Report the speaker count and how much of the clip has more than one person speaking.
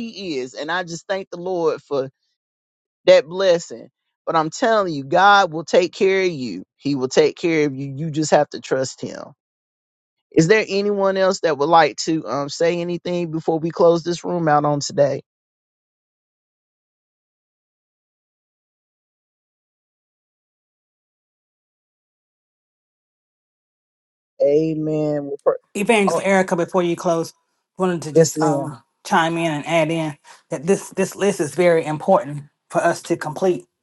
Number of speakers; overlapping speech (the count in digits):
2, about 2%